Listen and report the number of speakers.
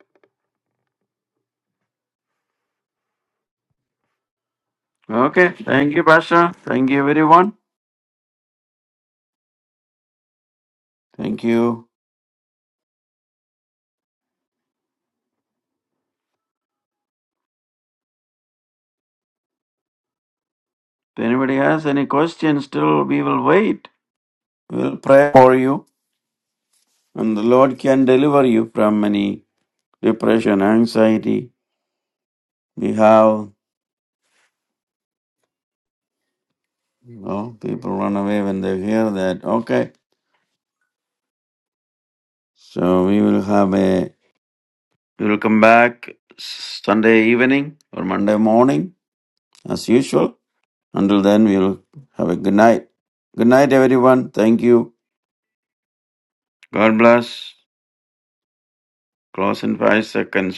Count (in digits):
1